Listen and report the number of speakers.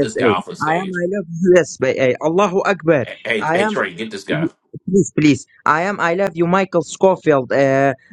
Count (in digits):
2